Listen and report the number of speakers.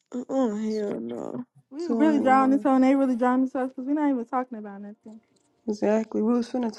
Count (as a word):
three